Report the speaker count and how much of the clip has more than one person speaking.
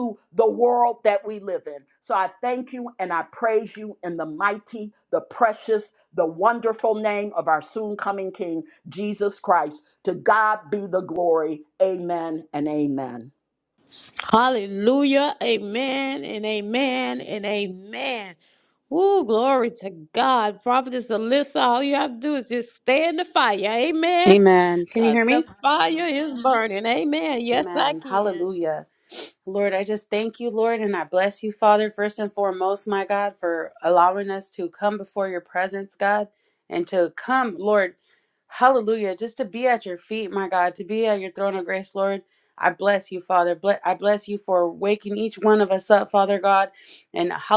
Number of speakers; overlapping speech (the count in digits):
3, about 3%